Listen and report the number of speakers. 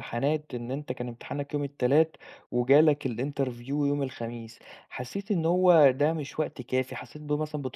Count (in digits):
1